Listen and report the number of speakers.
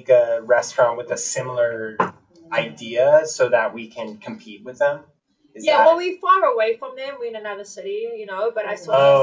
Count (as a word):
two